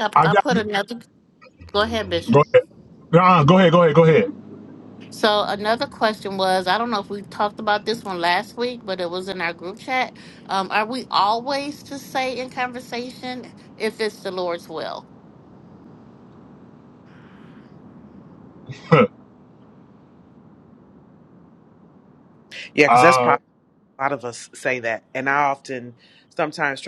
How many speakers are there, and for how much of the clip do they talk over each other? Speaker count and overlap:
3, about 3%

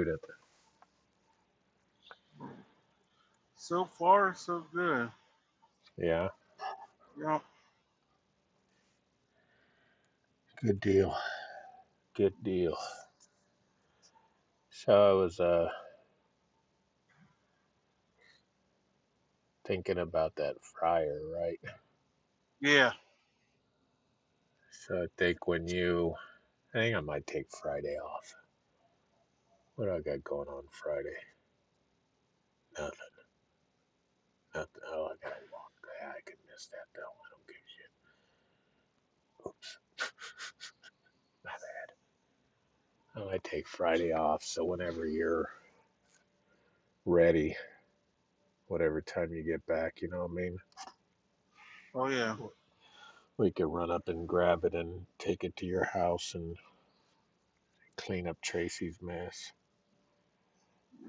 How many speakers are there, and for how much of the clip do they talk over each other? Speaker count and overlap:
2, no overlap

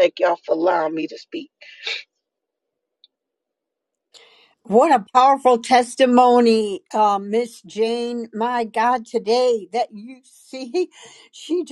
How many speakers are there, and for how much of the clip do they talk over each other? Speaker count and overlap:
2, no overlap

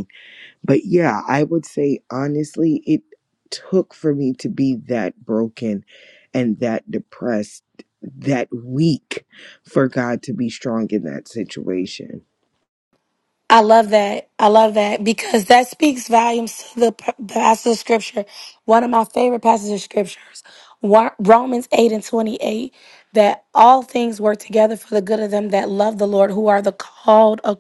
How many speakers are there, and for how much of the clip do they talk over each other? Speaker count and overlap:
2, no overlap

